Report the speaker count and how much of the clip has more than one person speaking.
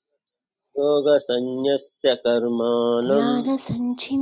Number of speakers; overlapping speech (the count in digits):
2, about 6%